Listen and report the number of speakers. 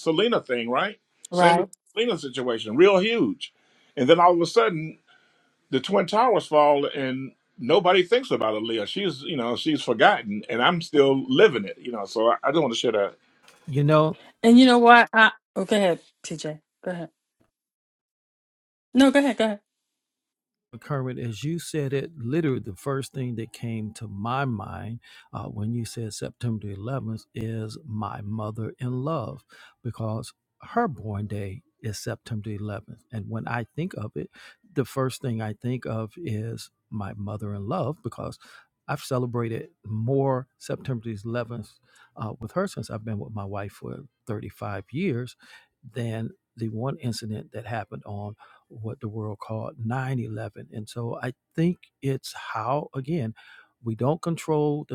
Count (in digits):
3